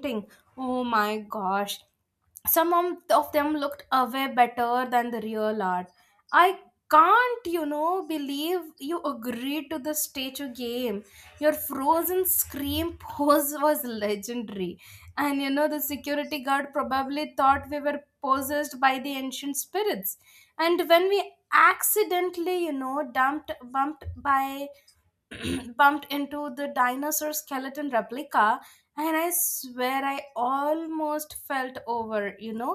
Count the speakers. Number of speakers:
1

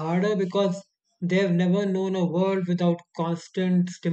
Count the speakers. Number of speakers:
1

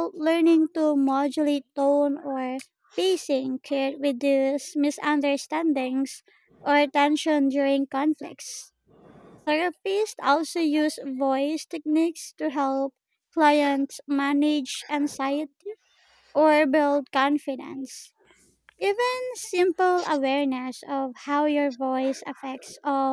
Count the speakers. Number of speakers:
1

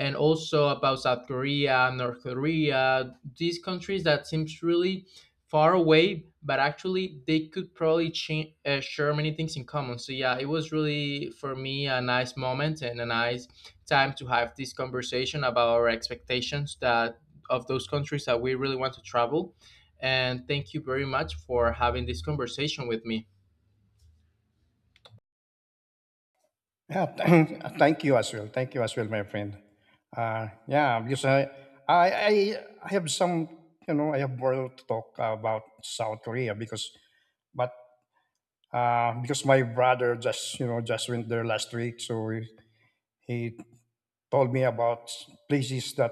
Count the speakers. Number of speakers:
2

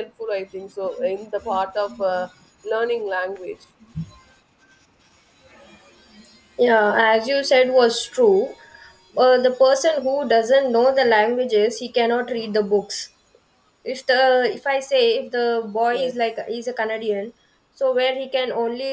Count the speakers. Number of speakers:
2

